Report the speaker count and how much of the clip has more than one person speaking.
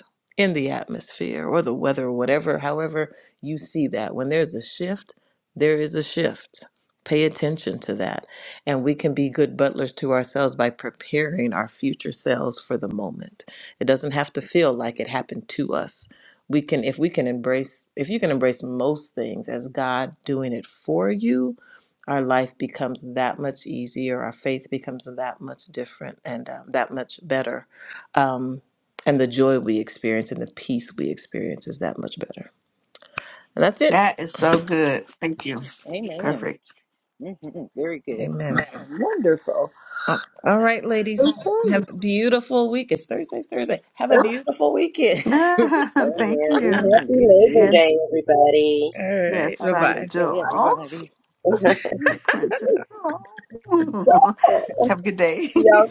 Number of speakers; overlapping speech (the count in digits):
5, about 9%